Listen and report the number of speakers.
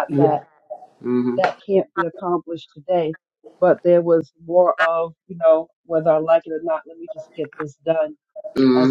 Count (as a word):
two